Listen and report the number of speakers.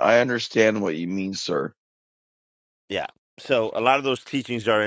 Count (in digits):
2